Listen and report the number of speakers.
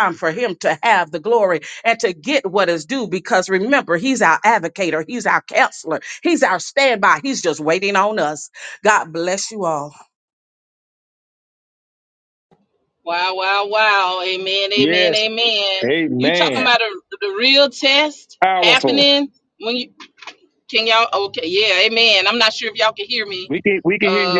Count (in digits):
3